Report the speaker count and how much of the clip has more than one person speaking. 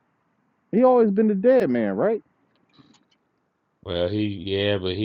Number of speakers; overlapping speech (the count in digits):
2, no overlap